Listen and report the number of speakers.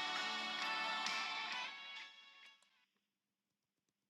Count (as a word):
zero